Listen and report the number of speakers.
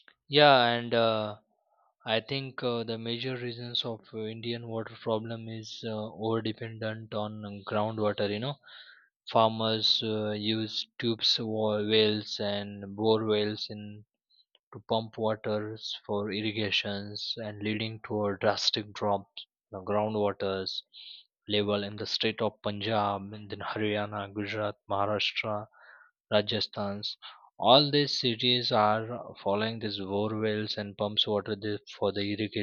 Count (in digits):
1